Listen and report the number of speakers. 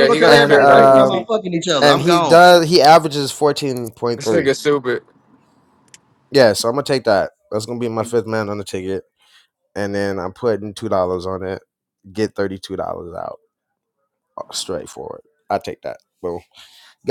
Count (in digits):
3